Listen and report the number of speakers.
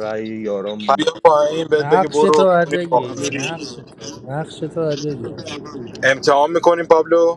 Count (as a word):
three